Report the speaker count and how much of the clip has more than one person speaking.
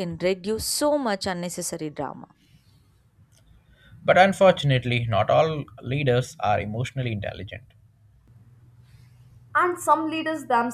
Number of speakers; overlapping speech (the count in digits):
3, no overlap